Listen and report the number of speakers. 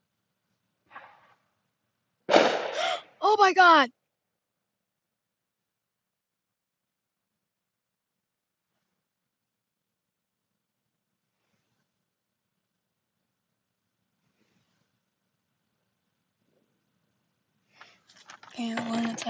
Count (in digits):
1